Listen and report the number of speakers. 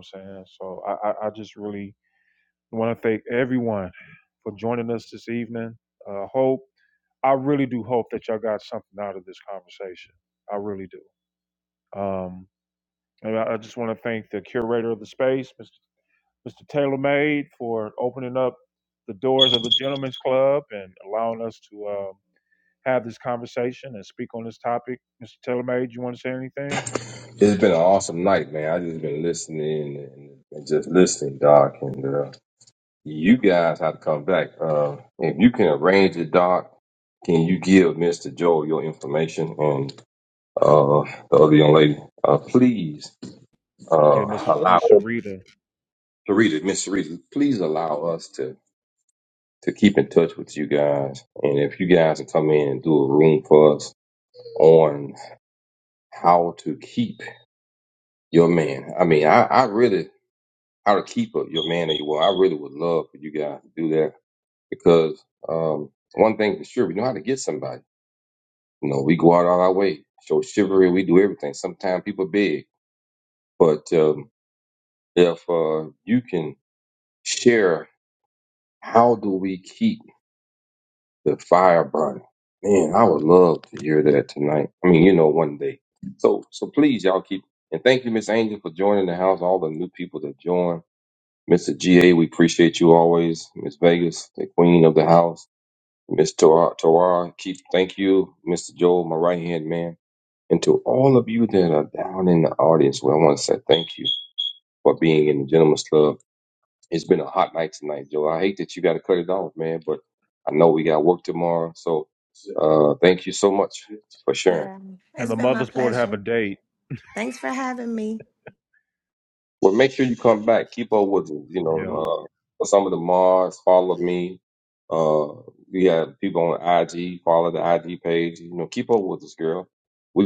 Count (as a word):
three